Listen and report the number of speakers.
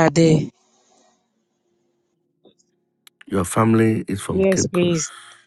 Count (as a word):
two